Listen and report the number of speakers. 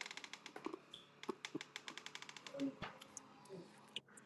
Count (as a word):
zero